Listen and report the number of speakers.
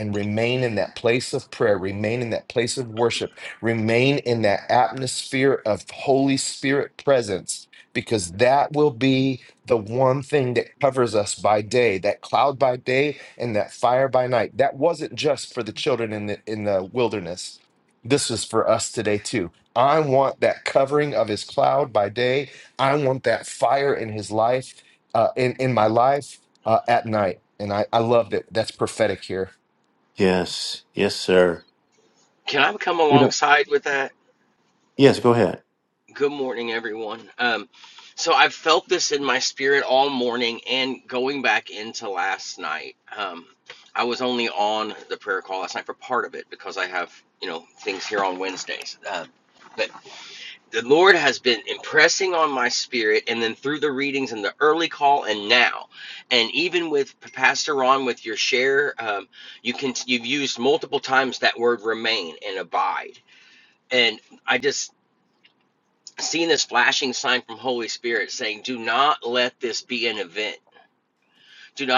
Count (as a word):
three